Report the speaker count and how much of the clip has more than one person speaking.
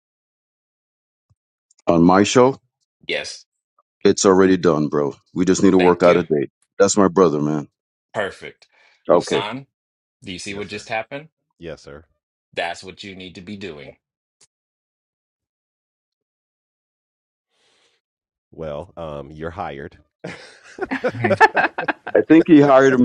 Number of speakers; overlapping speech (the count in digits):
3, about 5%